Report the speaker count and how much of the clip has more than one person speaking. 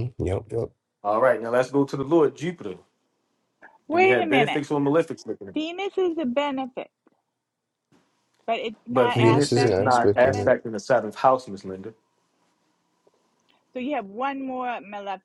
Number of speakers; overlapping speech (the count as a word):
three, about 15%